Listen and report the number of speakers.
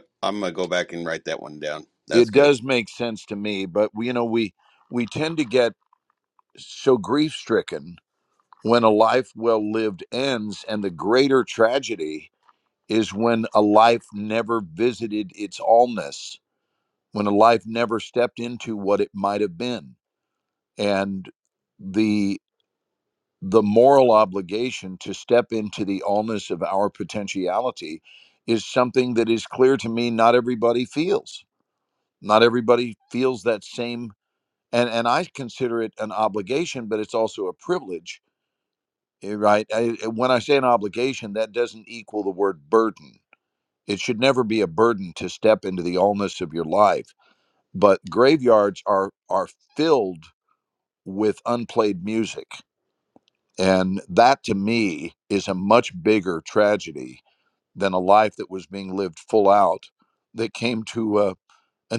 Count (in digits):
2